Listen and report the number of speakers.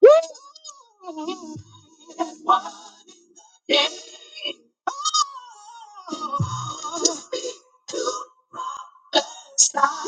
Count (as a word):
zero